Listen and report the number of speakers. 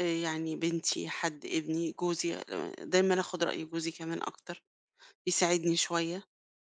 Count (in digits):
1